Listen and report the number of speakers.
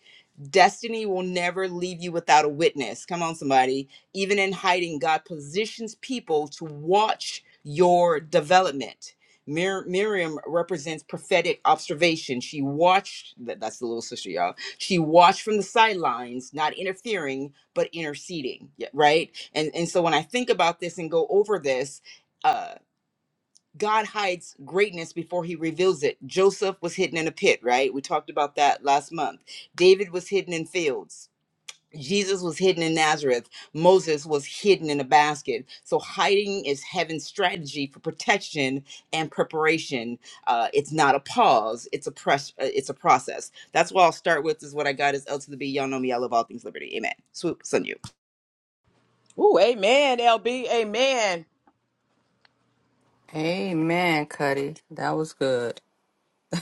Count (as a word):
three